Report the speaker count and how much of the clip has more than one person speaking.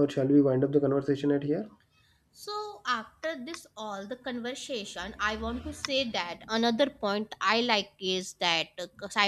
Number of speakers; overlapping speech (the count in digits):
2, no overlap